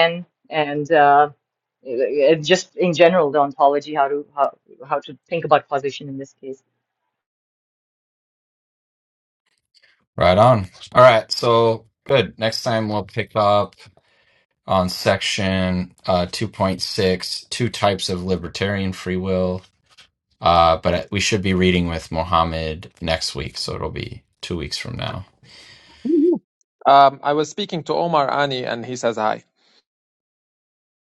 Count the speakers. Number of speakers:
3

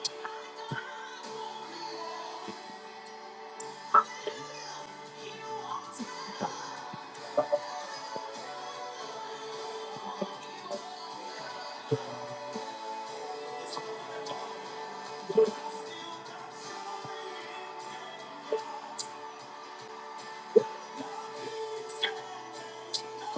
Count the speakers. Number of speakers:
0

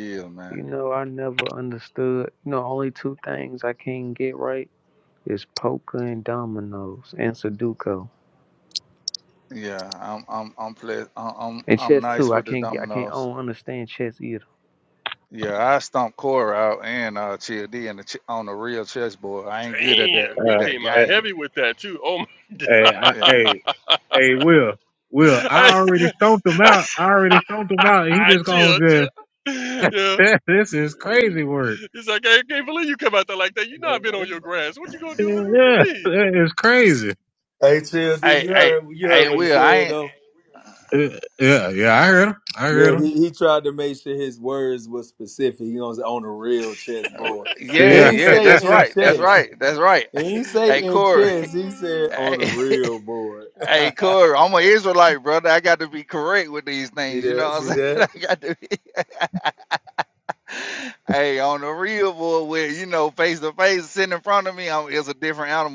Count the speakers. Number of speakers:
5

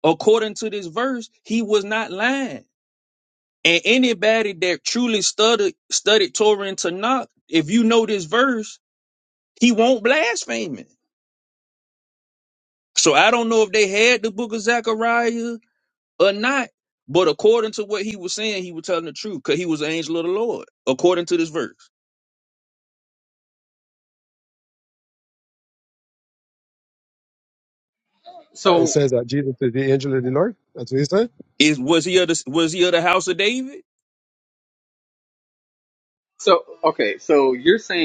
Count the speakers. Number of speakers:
3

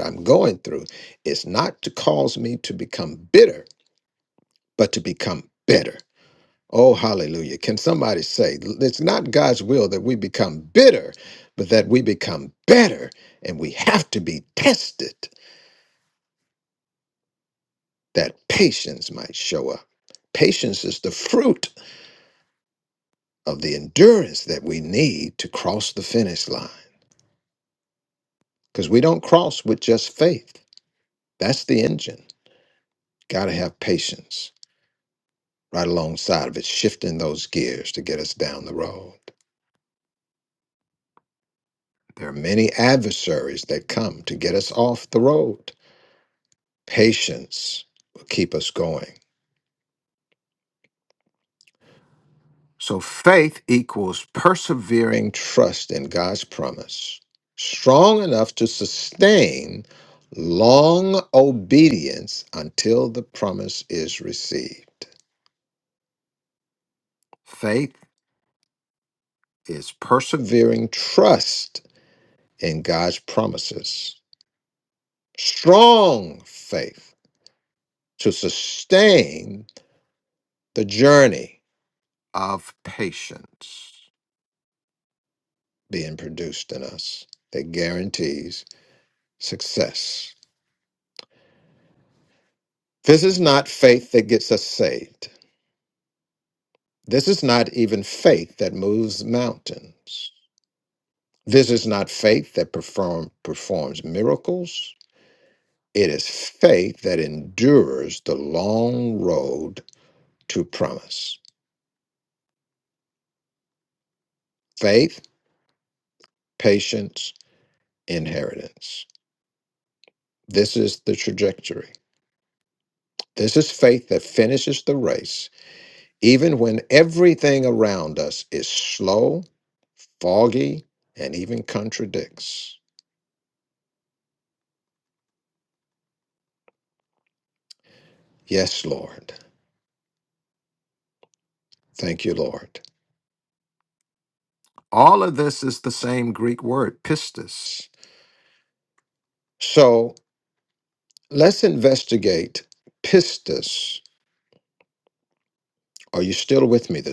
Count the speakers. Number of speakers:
1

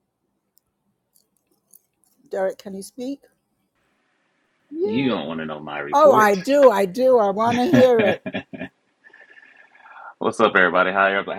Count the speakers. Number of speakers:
2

